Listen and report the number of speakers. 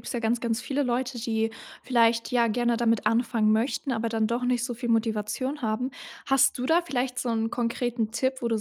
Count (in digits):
1